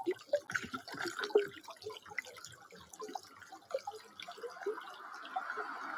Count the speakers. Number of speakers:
0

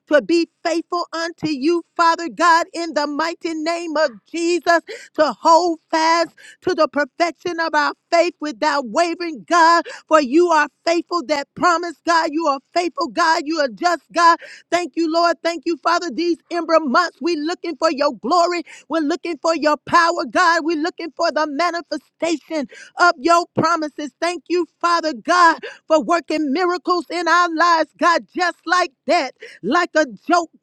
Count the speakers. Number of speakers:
1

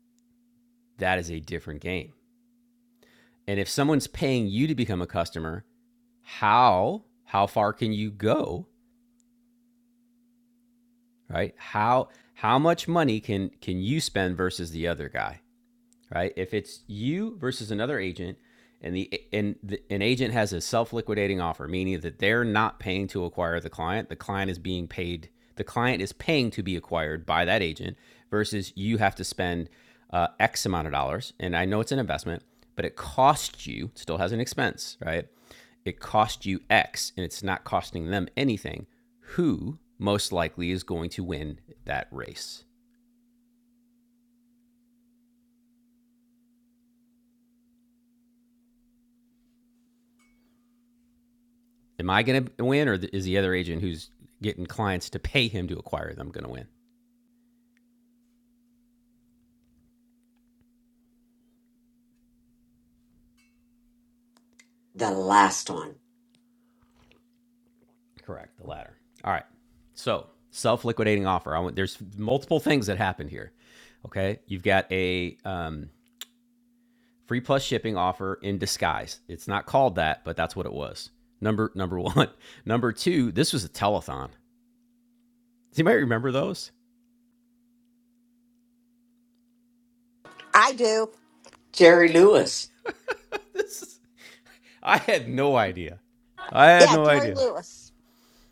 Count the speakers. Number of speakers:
3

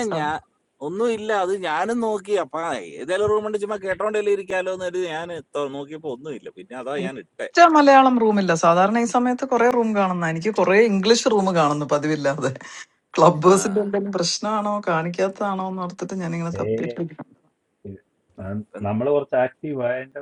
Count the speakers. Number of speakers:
3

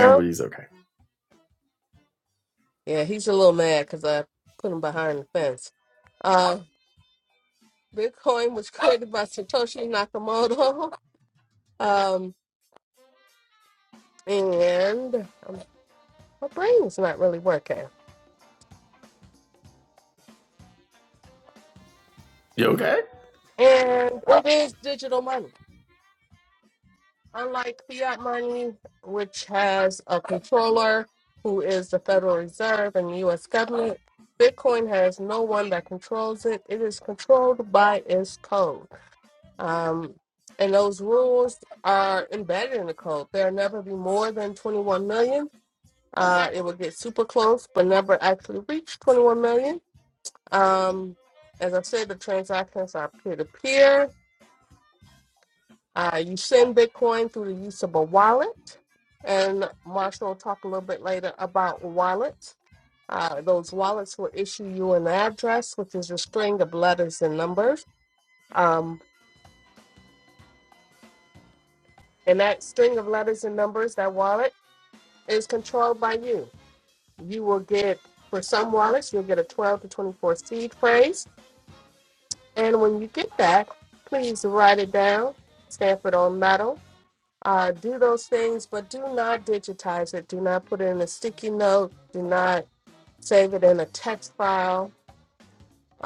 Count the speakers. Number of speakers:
2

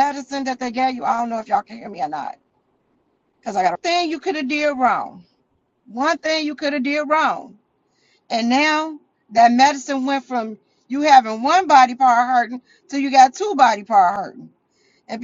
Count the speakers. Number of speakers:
1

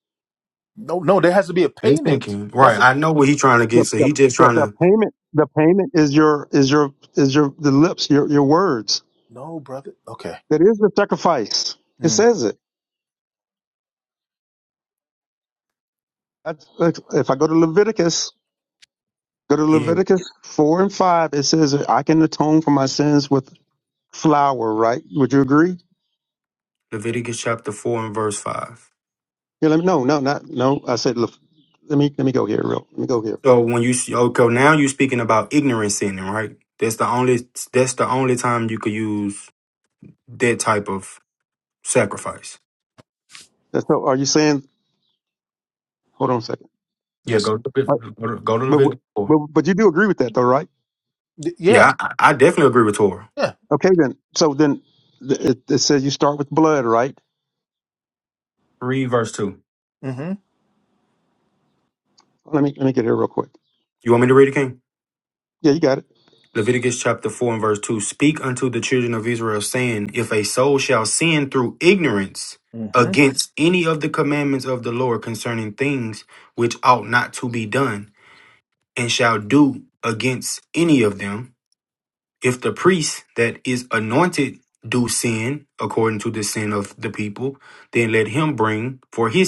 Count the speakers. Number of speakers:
3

